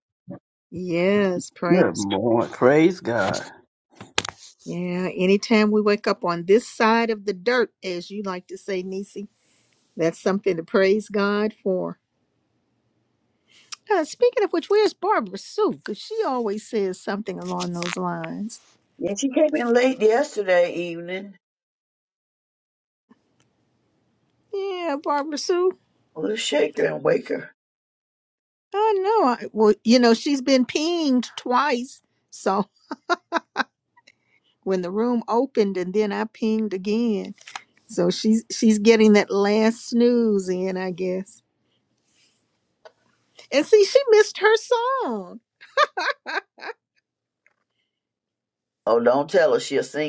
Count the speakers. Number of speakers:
three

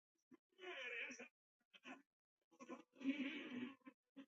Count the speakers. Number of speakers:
zero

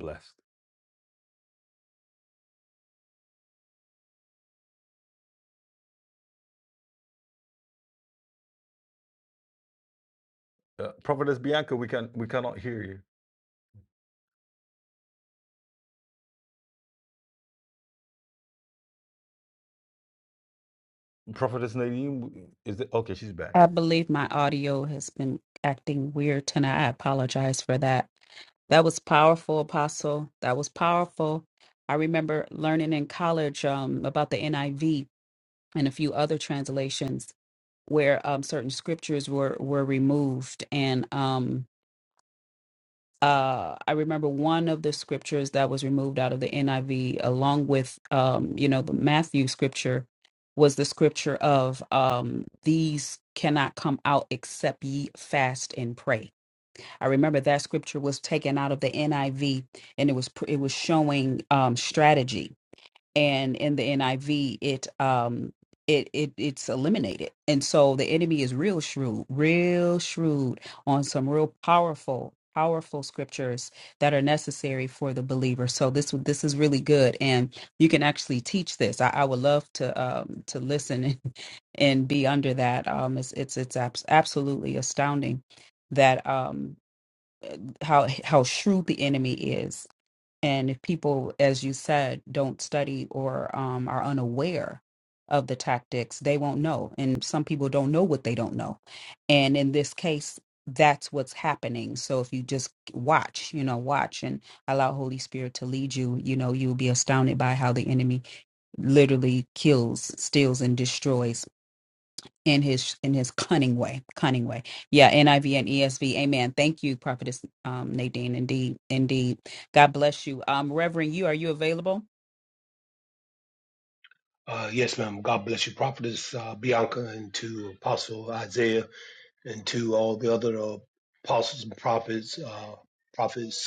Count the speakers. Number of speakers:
three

